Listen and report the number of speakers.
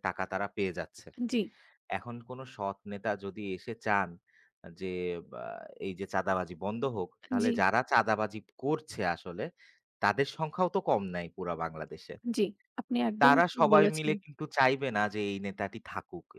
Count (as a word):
two